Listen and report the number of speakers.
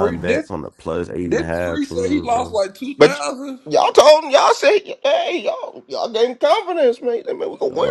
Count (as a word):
three